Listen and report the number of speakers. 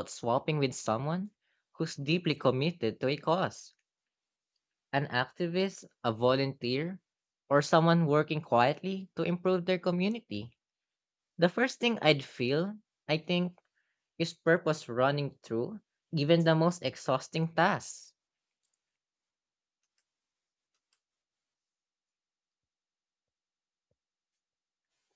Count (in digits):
1